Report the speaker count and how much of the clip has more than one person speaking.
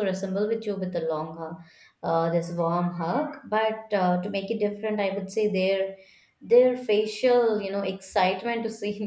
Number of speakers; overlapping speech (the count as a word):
one, no overlap